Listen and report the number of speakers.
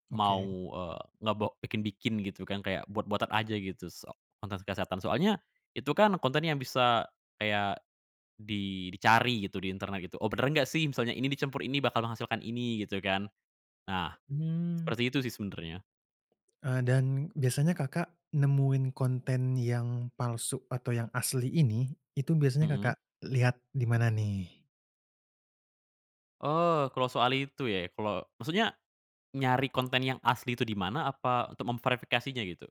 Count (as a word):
two